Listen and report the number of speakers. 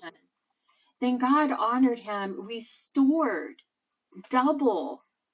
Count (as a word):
one